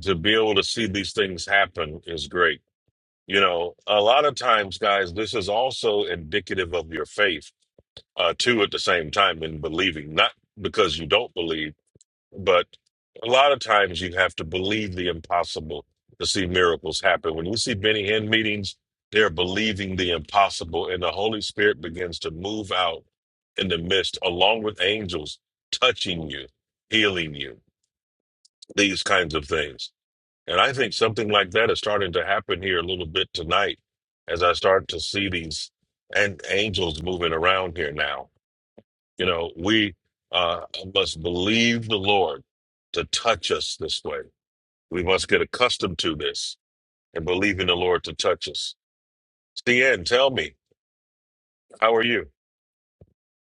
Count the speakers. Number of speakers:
1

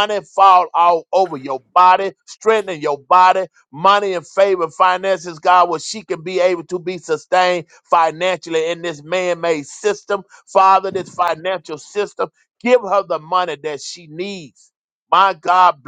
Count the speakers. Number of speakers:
1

